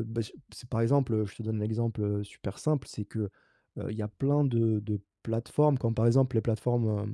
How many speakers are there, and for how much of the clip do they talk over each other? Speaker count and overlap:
one, no overlap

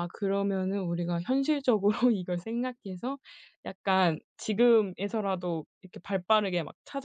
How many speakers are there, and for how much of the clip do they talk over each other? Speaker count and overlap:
one, no overlap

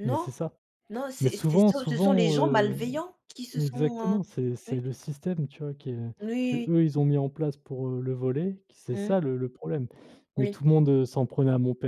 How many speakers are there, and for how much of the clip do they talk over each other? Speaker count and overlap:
two, about 28%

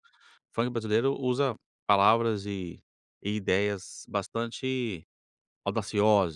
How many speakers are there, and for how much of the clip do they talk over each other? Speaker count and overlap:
one, no overlap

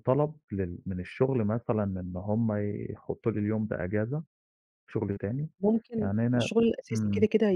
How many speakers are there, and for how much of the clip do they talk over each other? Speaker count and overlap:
two, about 11%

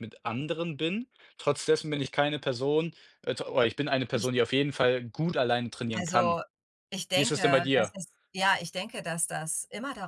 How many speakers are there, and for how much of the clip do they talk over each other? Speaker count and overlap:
two, about 13%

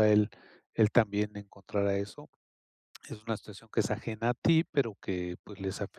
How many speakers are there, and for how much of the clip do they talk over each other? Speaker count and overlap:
one, no overlap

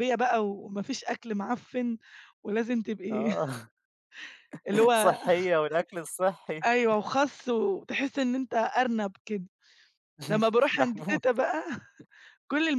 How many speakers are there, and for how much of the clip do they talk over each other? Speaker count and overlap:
two, about 7%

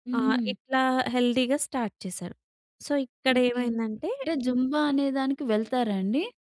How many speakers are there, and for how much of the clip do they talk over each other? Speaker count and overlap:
two, about 12%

